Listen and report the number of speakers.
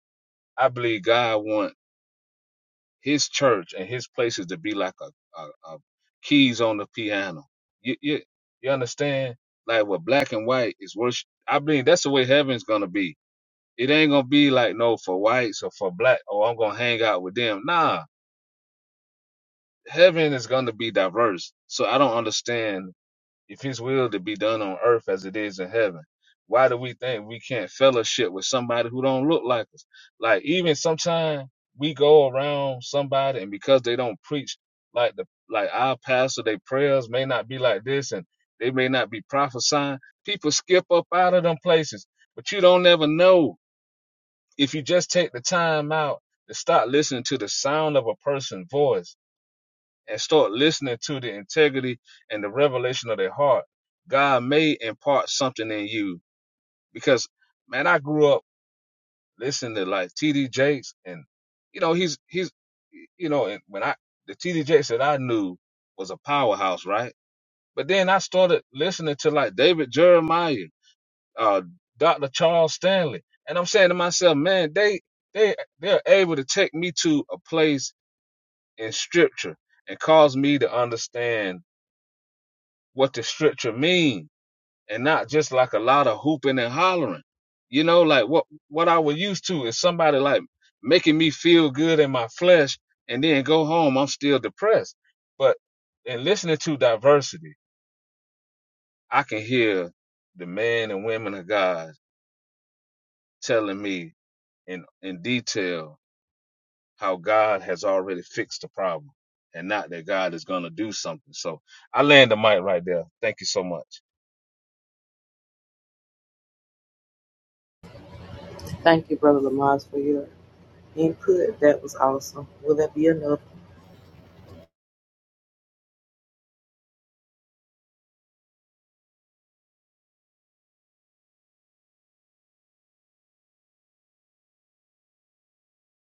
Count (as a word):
two